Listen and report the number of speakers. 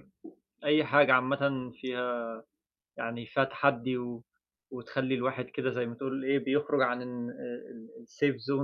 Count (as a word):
one